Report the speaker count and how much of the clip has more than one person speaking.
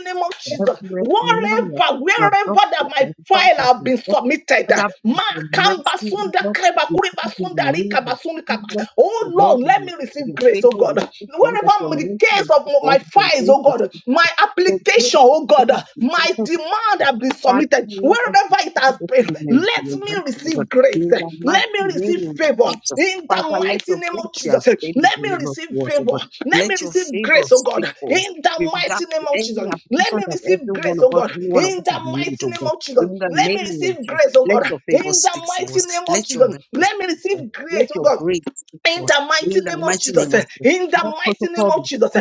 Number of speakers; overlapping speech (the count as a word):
two, about 84%